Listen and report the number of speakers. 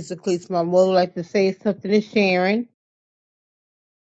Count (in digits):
1